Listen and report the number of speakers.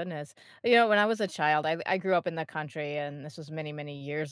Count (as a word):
one